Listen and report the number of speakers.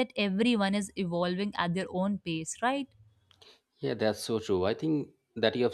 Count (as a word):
two